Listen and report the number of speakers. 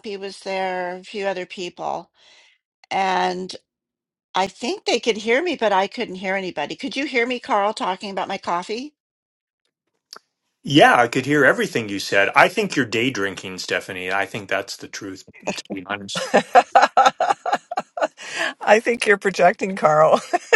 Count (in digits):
3